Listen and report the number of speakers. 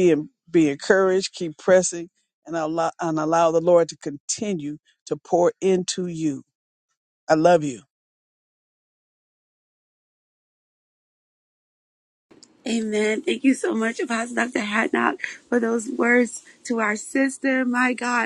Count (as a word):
two